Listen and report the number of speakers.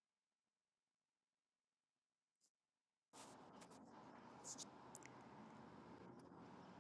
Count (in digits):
0